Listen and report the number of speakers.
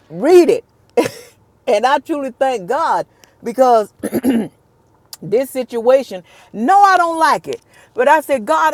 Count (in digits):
1